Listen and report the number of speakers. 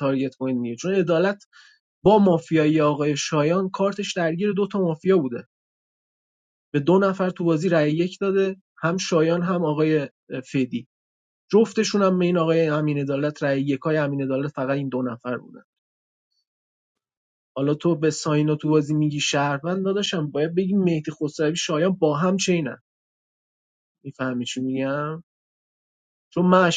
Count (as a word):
one